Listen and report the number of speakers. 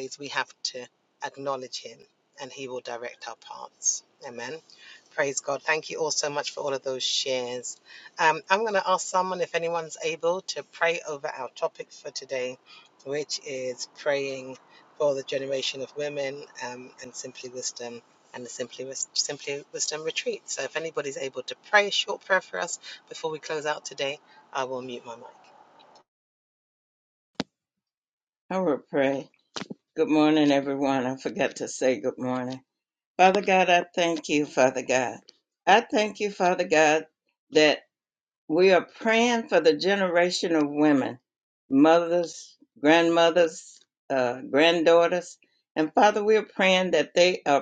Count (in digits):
2